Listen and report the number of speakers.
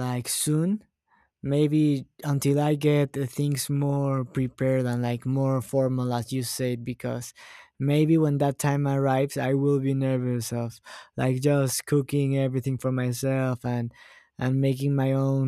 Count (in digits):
1